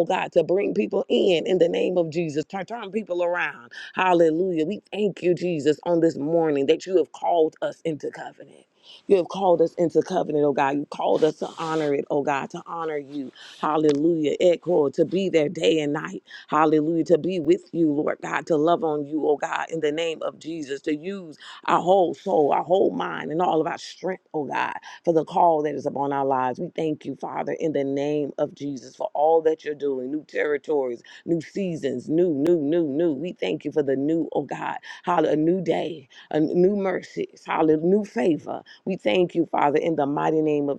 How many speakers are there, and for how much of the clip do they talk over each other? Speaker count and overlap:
1, no overlap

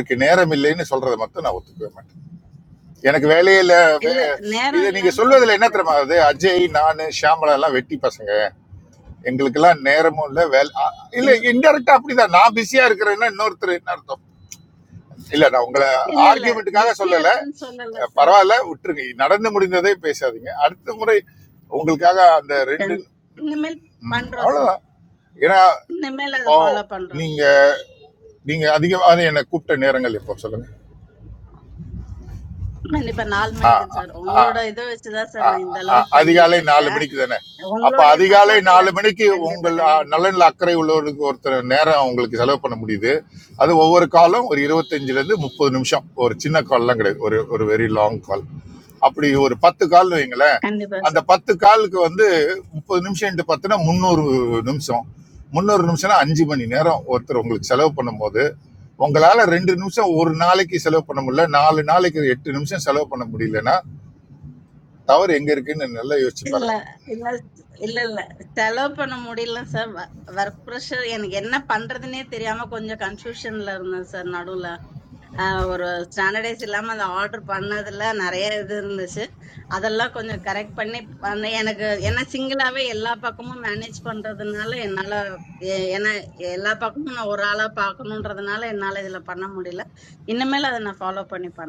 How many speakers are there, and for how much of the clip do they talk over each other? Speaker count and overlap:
2, about 9%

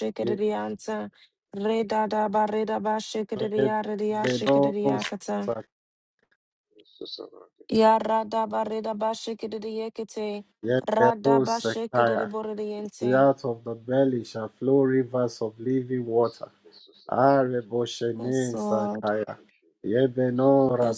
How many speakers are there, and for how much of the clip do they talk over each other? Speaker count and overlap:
3, about 27%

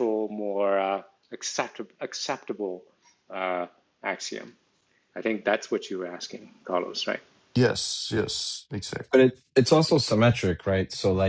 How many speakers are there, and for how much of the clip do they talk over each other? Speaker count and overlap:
3, about 1%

